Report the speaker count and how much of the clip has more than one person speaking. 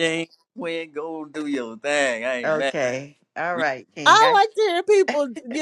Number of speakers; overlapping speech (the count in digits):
3, about 13%